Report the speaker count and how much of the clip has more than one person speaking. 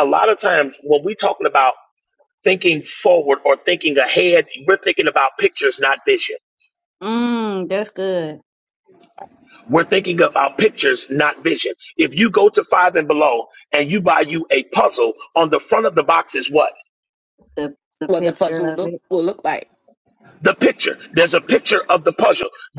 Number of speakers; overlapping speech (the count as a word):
three, about 4%